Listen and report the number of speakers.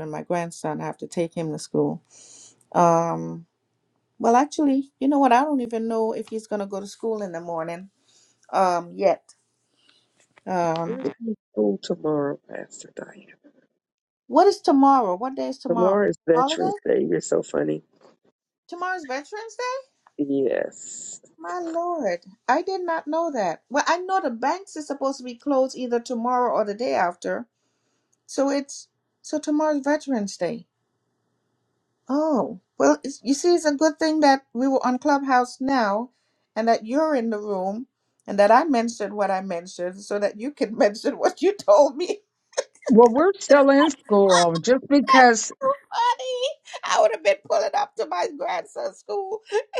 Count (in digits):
3